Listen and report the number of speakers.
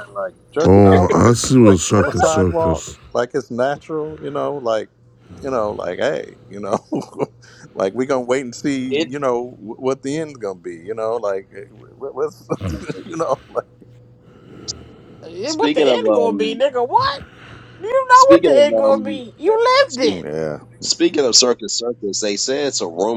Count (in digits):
4